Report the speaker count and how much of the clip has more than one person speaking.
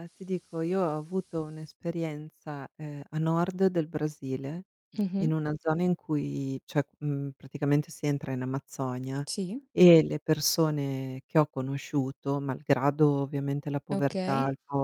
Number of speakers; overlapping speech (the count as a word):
two, about 5%